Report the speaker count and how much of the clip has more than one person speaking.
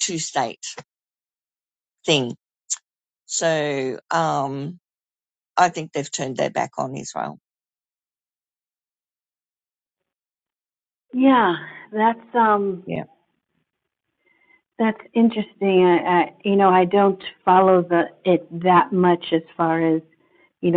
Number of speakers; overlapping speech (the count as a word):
two, no overlap